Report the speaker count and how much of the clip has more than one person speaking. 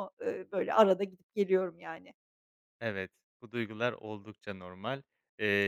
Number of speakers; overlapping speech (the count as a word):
two, no overlap